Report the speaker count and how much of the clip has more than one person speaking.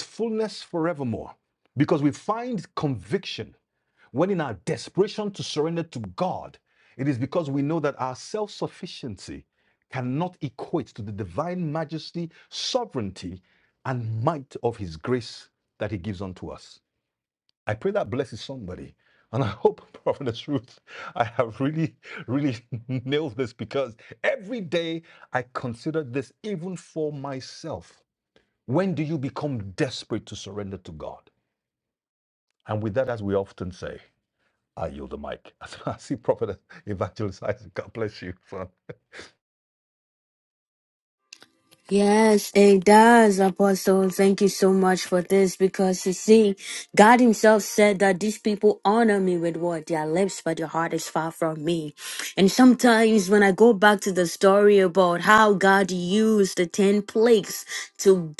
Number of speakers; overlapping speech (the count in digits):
2, no overlap